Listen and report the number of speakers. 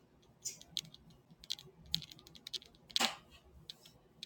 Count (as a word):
zero